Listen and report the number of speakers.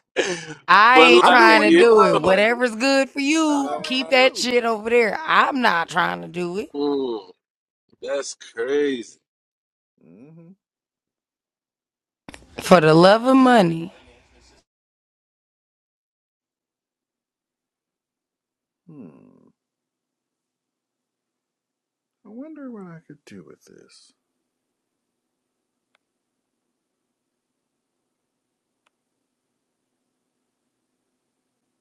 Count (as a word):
three